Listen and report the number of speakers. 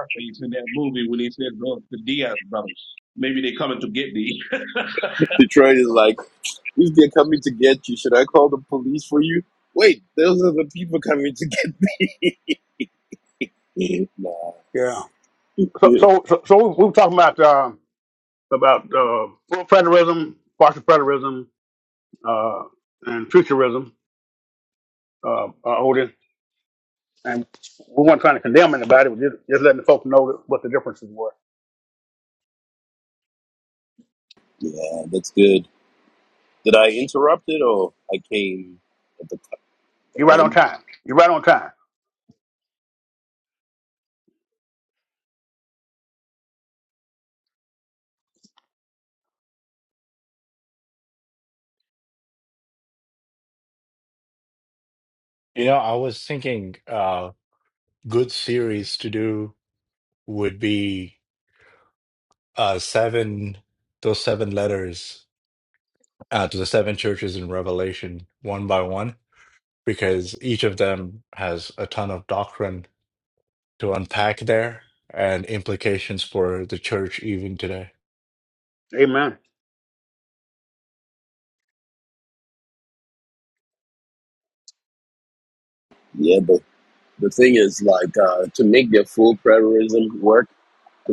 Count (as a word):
four